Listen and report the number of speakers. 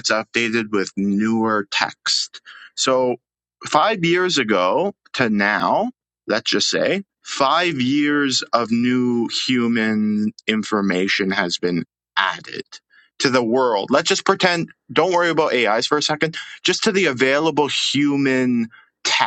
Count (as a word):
one